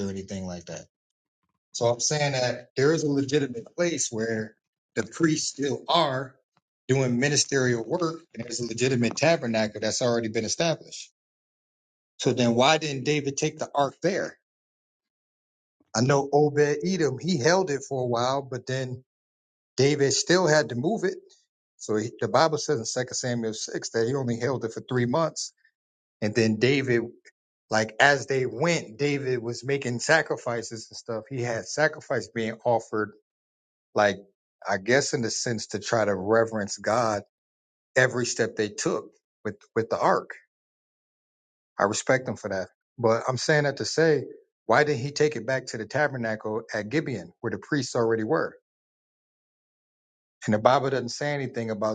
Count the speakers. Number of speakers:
1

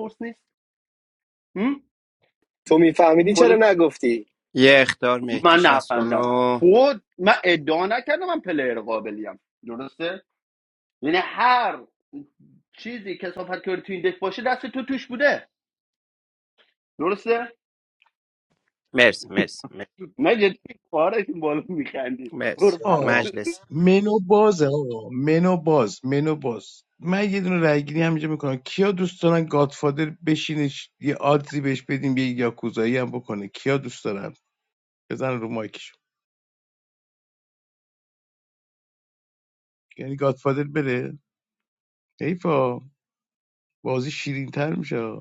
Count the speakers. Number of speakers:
4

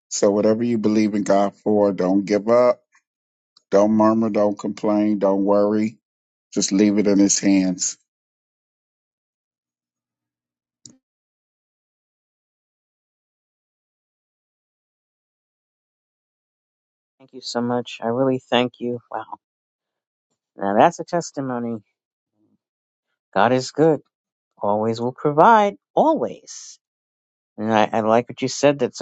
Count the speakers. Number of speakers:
2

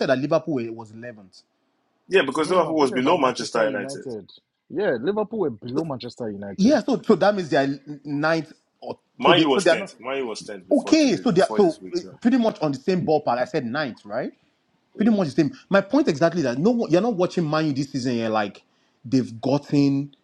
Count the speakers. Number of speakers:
3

